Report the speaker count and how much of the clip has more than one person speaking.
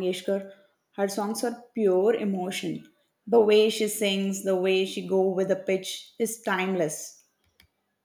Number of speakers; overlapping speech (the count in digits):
1, no overlap